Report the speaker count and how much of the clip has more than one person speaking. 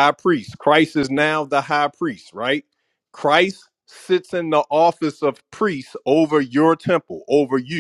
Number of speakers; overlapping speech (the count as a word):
one, no overlap